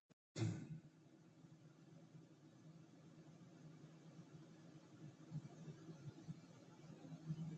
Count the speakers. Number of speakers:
0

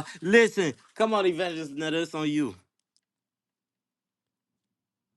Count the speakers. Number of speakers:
1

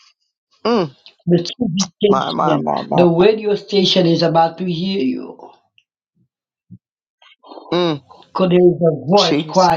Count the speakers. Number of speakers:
2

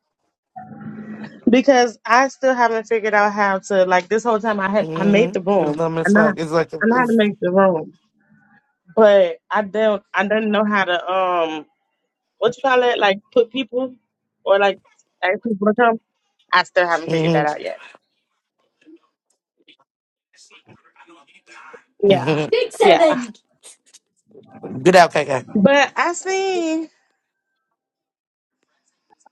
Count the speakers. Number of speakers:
2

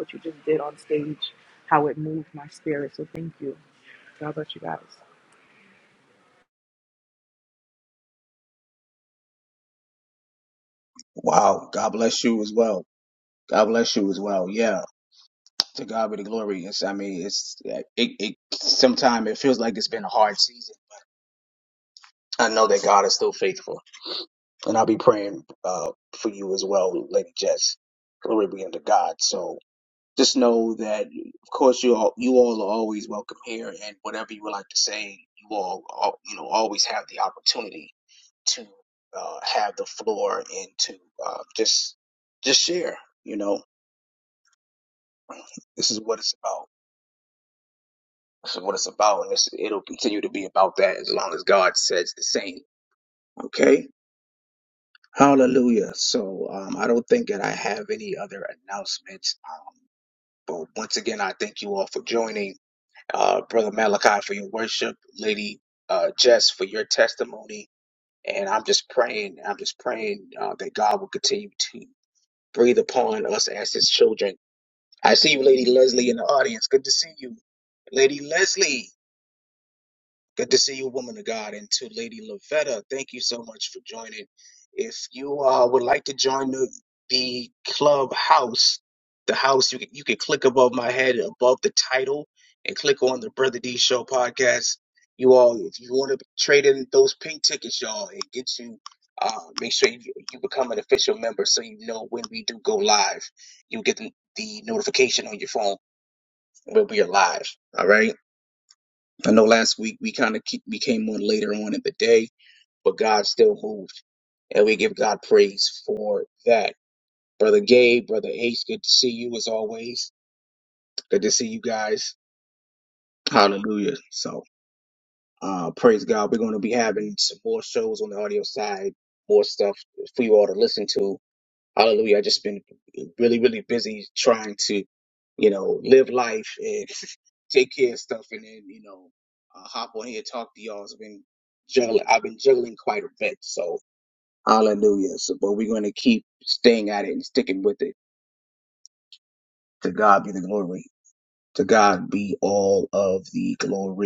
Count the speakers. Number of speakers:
2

